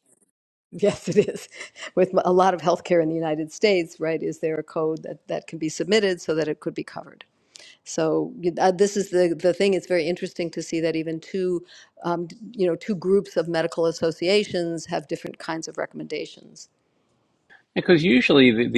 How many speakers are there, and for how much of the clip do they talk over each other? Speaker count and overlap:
2, no overlap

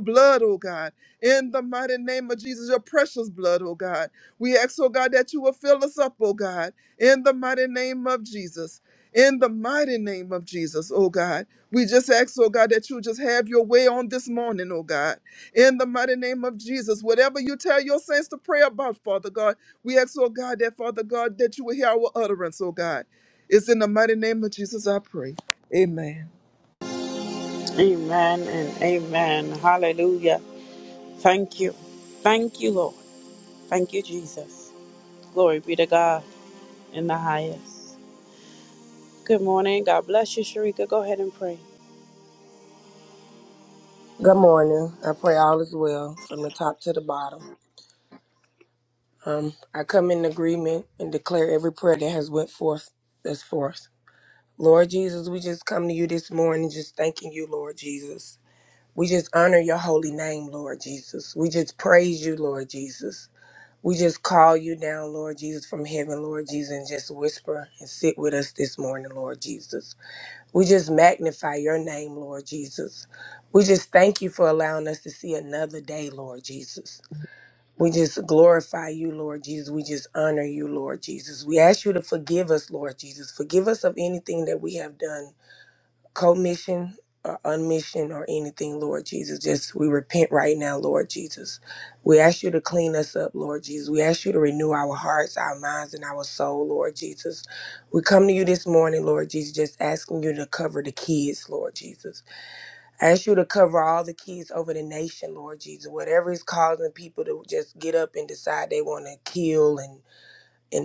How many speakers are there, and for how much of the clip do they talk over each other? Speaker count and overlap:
3, no overlap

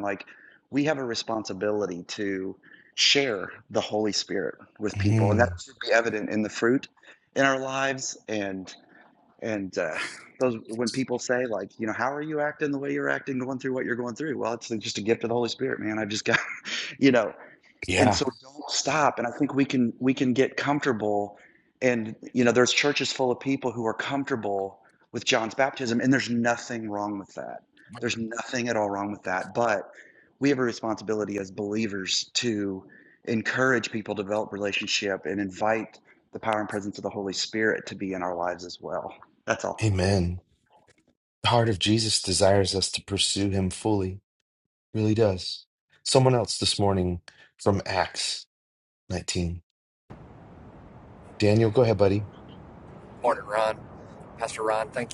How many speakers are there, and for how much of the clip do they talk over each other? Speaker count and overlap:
3, about 2%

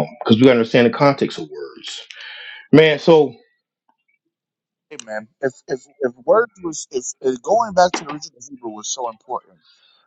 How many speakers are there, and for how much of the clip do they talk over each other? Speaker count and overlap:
2, no overlap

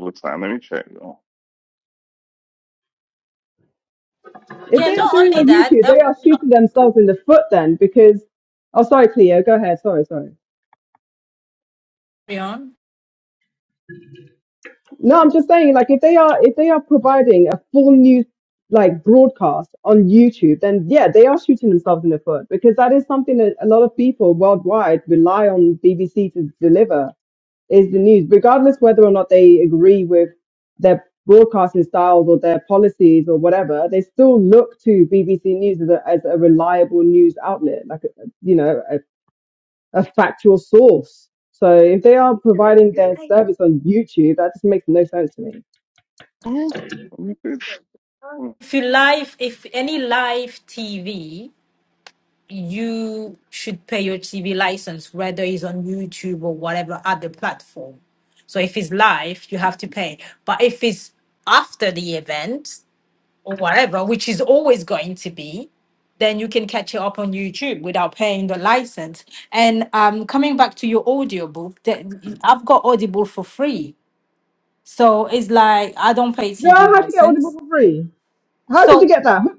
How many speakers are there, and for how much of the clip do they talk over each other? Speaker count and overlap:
3, about 3%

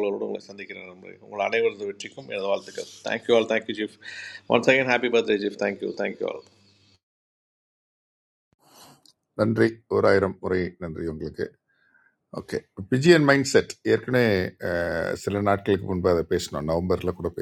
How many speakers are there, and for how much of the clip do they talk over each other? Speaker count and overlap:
2, no overlap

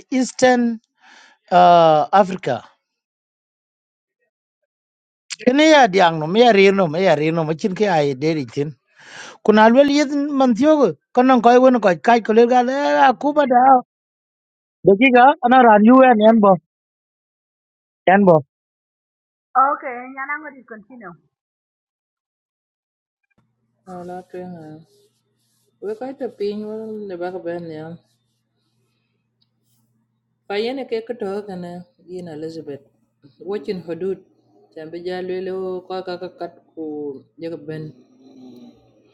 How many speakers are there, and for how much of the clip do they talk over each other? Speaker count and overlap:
3, no overlap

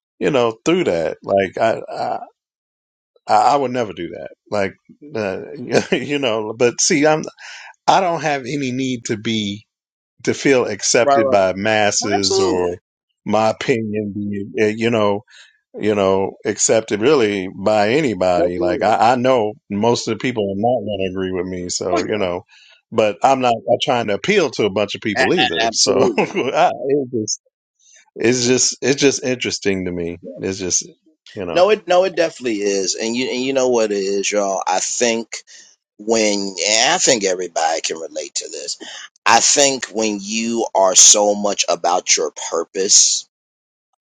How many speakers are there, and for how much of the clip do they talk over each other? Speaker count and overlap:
2, about 7%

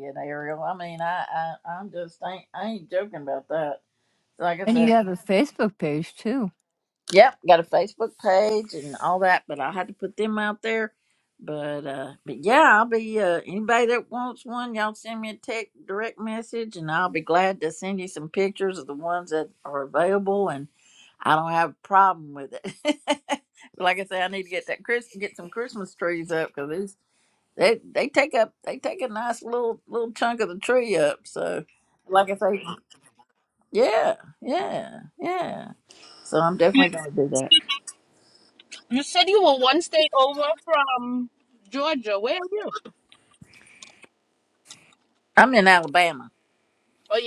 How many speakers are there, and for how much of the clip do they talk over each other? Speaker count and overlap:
3, about 1%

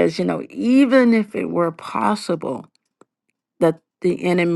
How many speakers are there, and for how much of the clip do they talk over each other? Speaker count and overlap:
1, no overlap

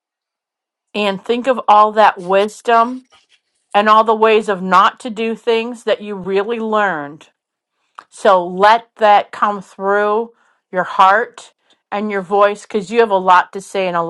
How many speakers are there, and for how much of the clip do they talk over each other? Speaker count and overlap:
1, no overlap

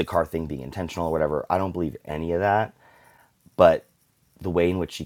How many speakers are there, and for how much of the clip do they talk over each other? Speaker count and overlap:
1, no overlap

